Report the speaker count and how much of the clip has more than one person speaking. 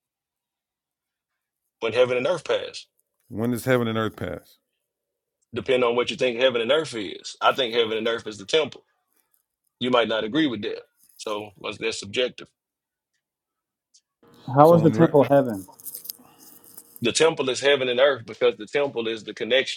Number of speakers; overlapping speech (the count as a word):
three, about 3%